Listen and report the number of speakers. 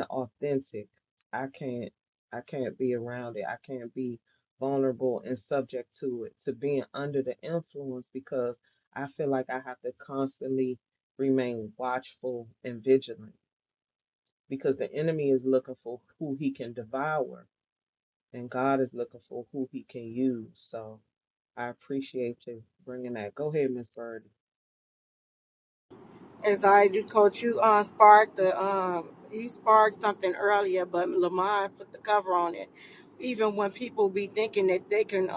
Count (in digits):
2